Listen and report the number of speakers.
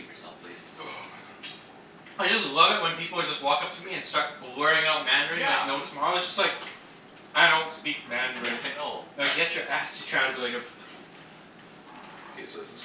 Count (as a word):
three